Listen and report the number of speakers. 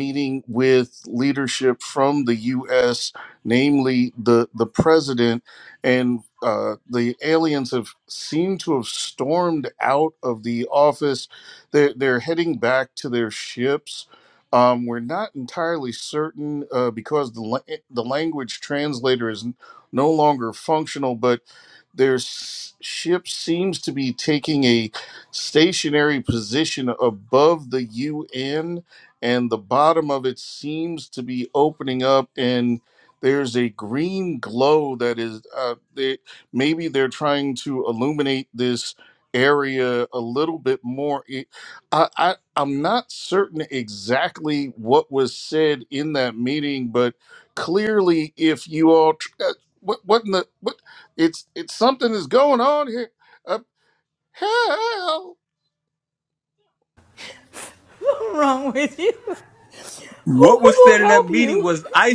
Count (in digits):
3